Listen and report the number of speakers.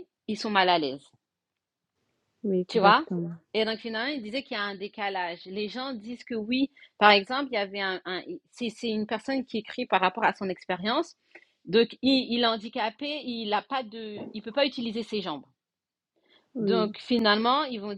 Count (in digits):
2